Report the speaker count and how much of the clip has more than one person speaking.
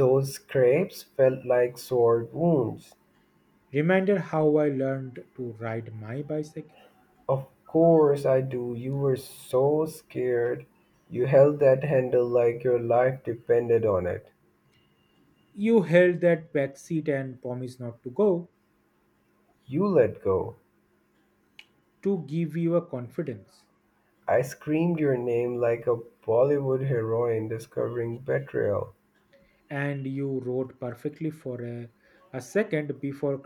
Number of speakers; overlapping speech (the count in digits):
2, no overlap